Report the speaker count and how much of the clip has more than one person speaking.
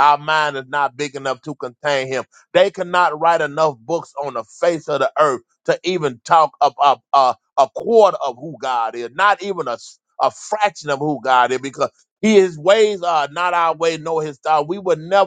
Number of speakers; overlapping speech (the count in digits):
1, no overlap